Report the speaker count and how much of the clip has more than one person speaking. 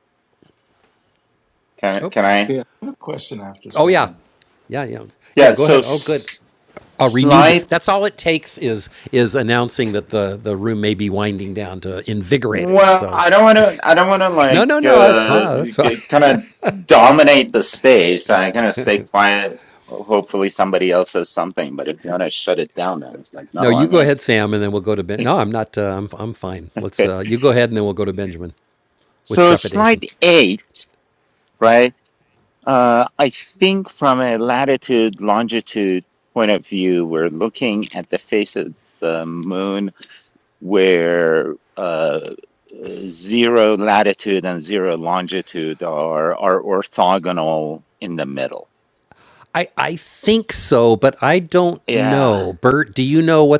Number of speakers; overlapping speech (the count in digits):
3, about 10%